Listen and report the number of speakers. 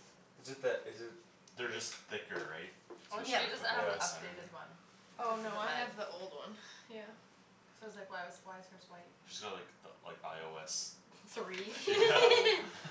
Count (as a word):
four